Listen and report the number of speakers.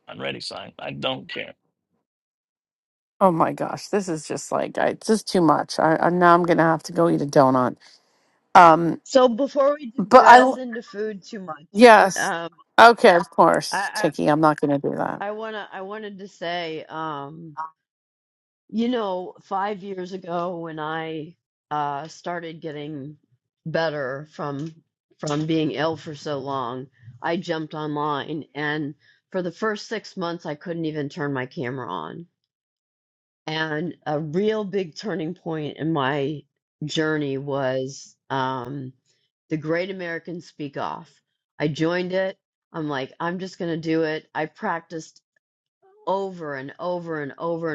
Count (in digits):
3